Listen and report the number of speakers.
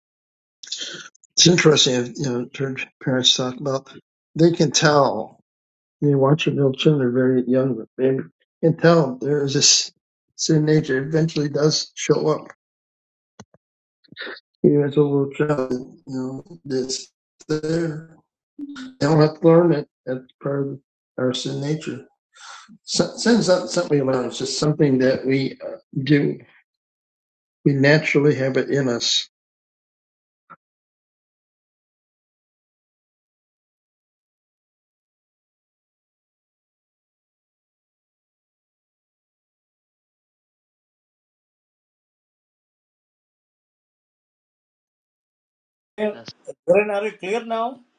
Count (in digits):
2